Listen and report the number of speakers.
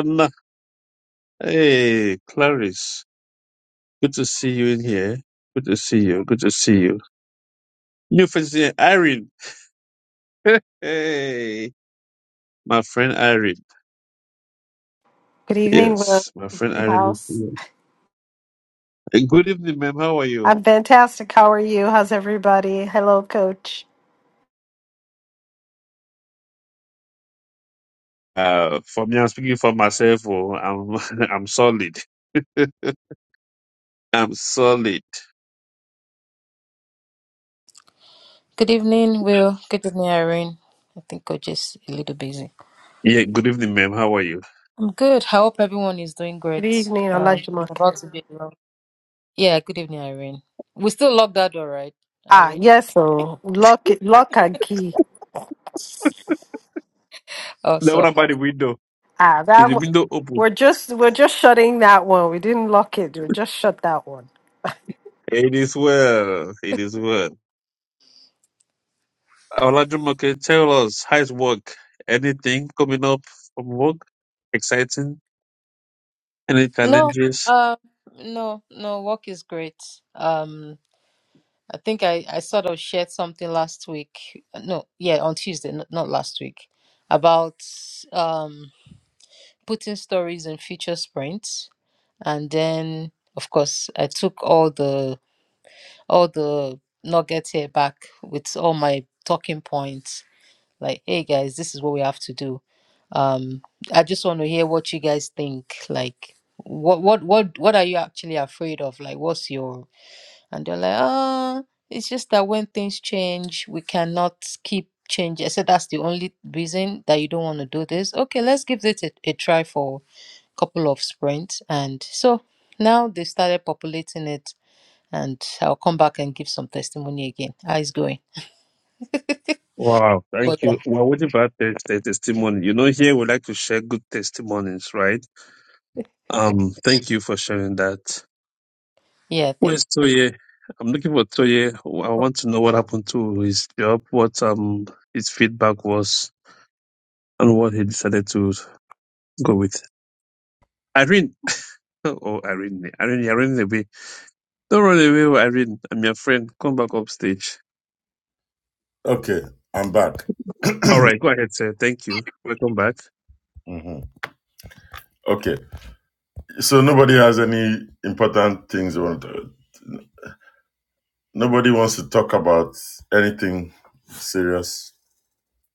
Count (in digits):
4